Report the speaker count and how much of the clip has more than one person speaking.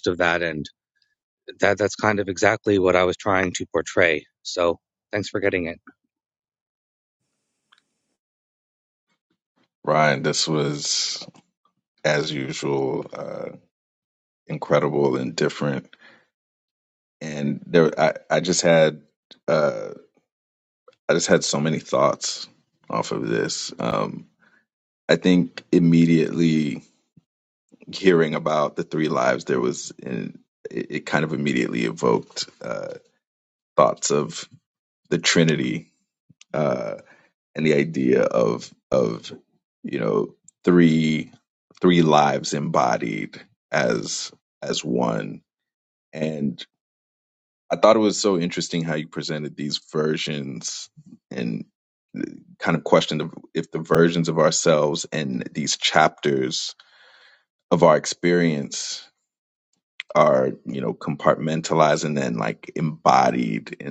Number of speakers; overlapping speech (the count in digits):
2, no overlap